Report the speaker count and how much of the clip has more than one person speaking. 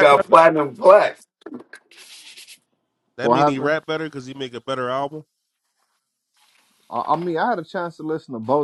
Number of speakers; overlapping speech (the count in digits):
3, about 8%